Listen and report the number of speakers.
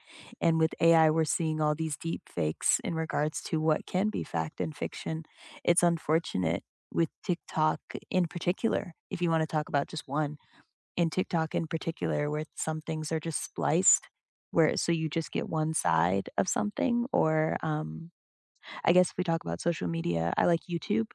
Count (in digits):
1